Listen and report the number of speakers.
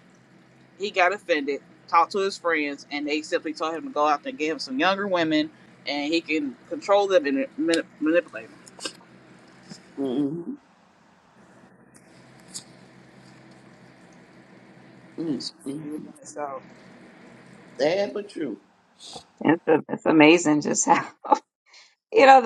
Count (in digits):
3